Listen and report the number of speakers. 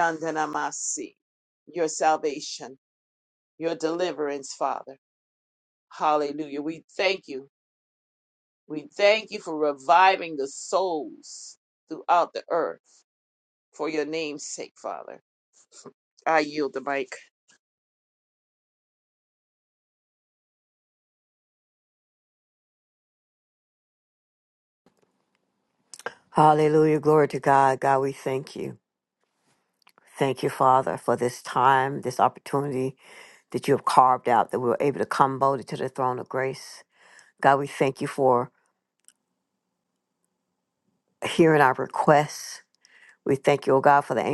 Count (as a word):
two